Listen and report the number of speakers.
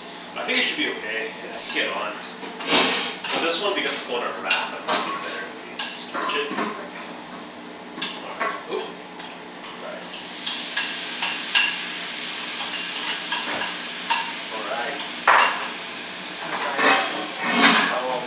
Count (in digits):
2